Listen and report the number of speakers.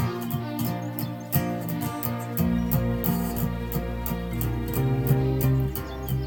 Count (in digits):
0